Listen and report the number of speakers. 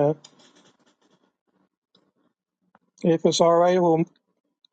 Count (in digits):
1